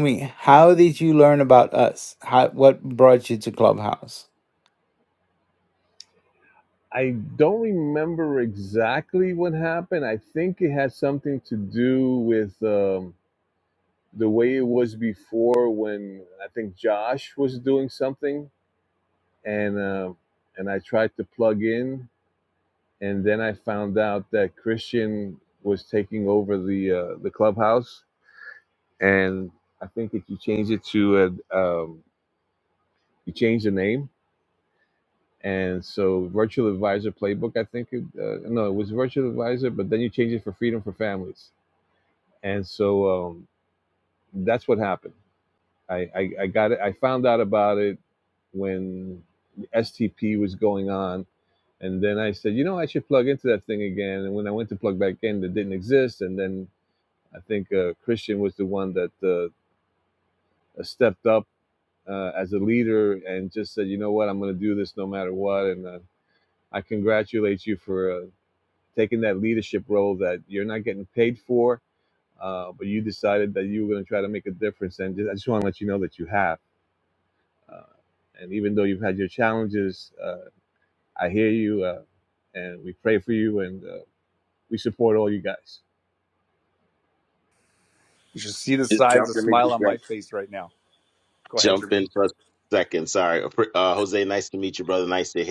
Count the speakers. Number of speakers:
four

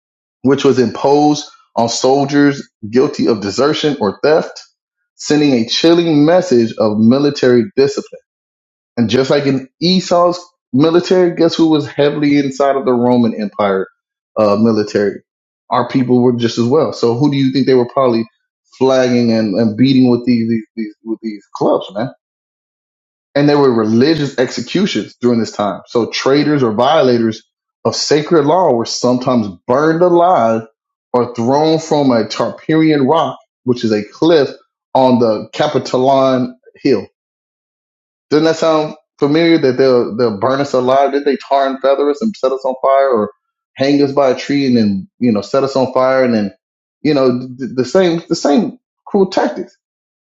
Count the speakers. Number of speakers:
one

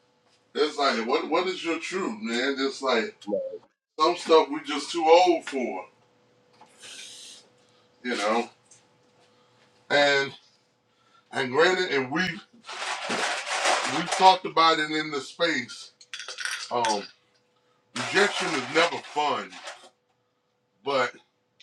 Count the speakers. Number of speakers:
one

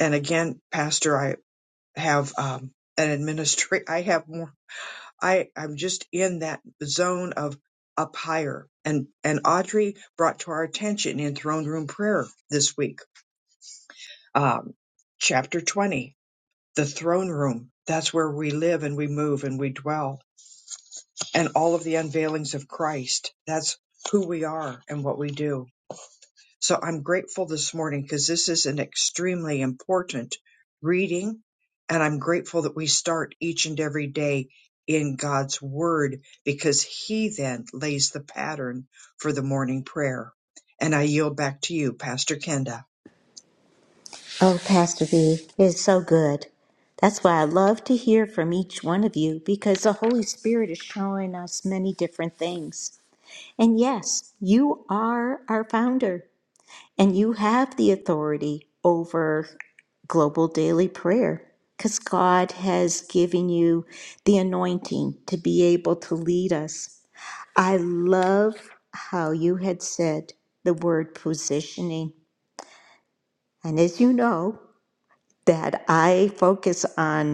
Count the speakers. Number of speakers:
two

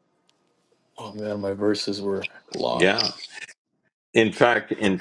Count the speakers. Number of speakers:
two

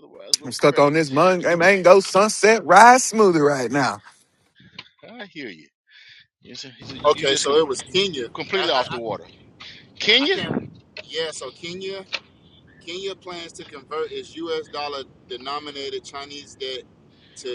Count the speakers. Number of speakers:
three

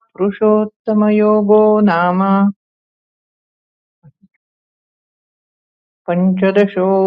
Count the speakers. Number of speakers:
one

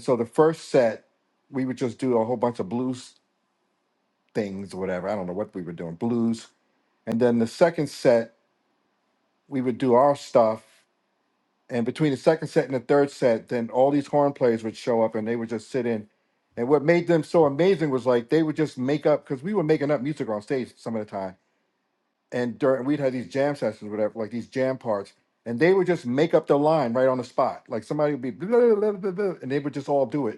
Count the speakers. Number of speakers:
one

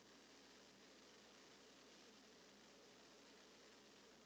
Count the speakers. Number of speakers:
zero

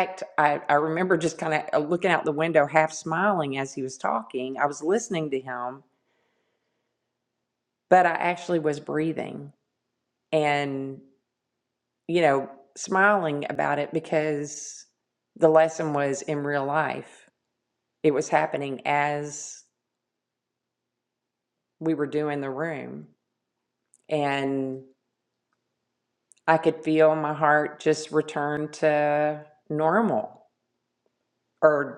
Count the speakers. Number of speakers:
one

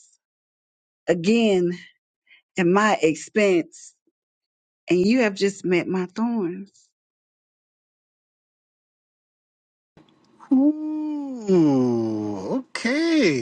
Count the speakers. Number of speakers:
two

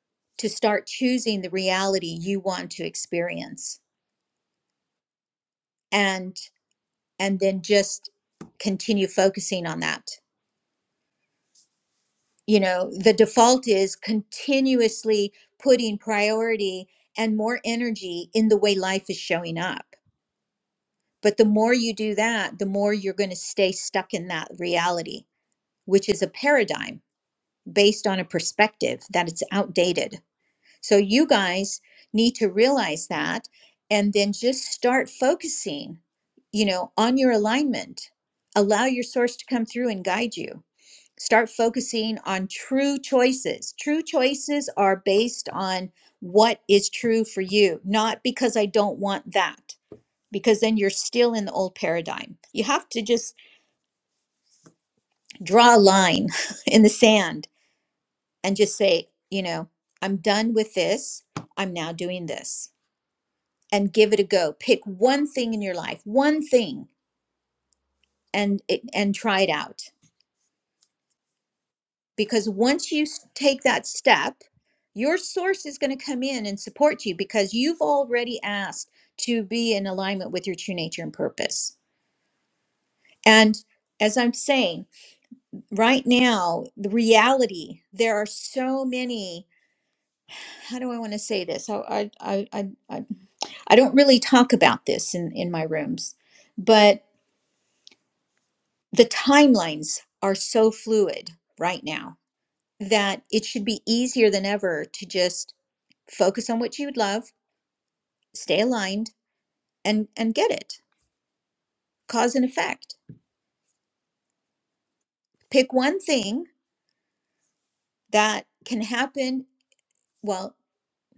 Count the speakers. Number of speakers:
one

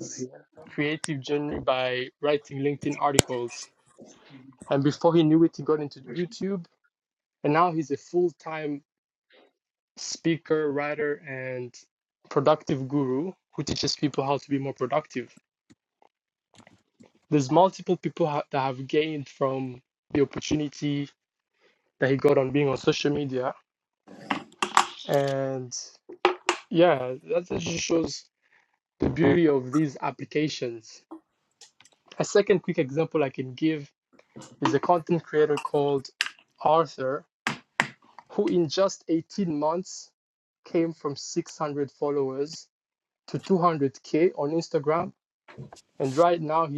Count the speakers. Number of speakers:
one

